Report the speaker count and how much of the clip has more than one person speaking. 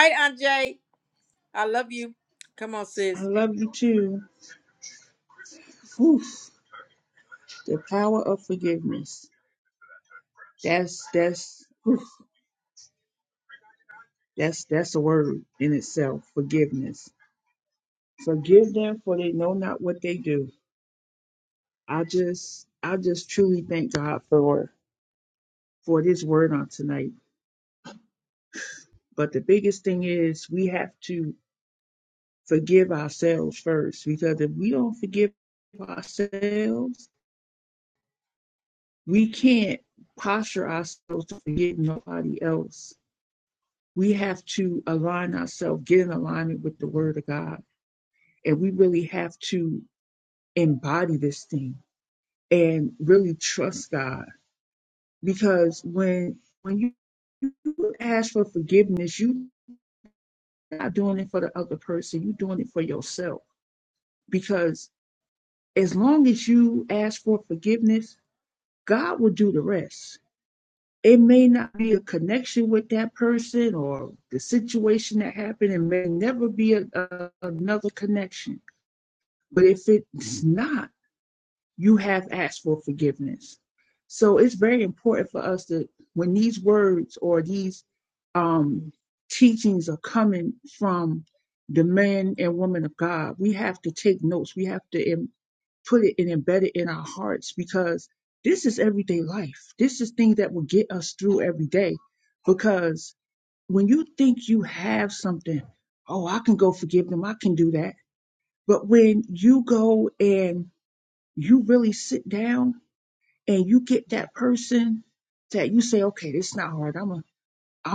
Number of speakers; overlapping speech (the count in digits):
2, under 1%